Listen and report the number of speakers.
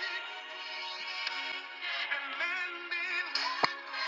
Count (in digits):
0